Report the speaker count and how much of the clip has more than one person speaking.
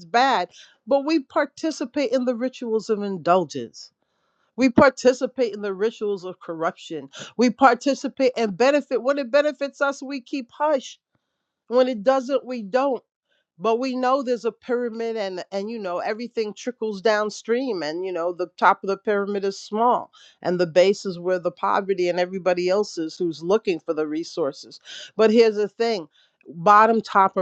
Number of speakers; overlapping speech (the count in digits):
1, no overlap